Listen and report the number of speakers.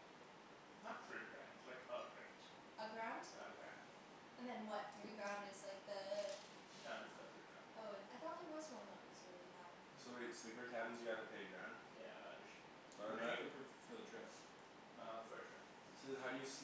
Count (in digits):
4